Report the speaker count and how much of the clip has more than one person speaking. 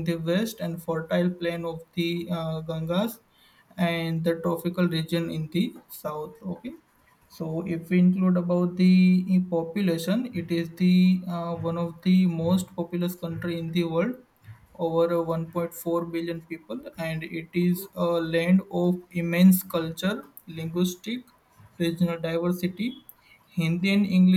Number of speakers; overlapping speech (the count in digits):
1, no overlap